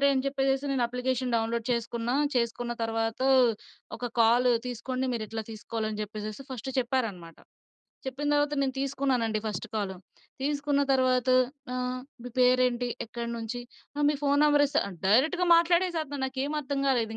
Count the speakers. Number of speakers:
one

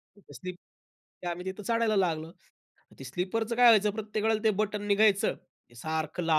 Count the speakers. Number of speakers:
one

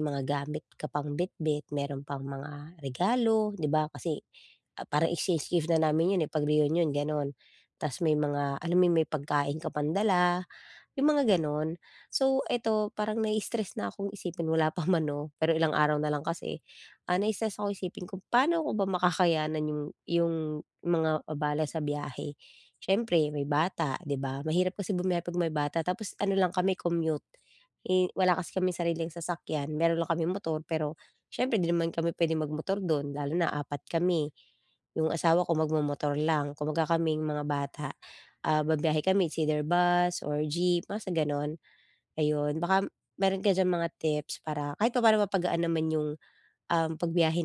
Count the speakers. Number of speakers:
one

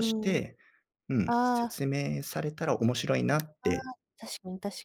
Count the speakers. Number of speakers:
two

